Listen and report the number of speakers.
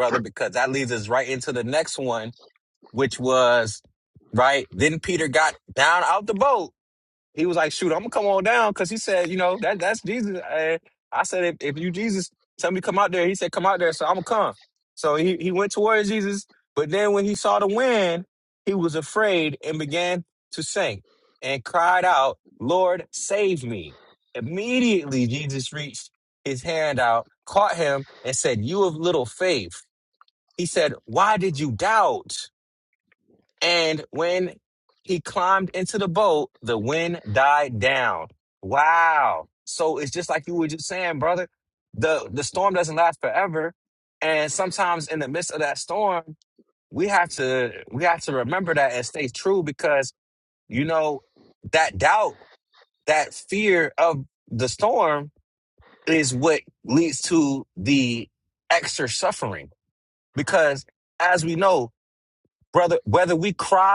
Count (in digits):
1